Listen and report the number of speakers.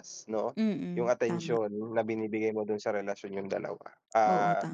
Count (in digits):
2